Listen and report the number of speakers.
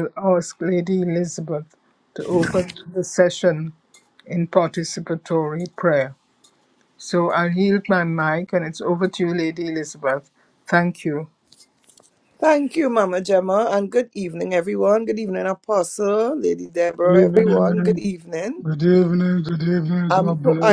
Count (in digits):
3